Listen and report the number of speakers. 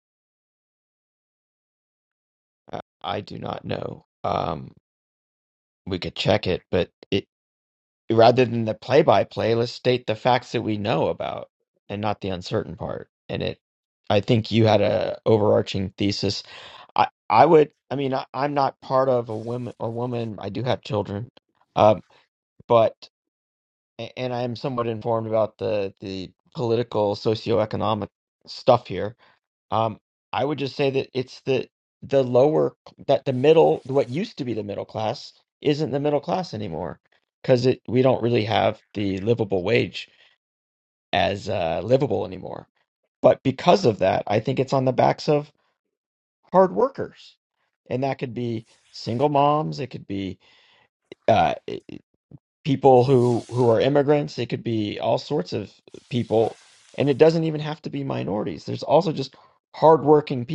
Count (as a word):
one